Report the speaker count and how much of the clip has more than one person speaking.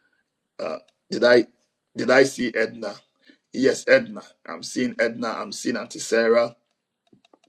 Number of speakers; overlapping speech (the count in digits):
1, no overlap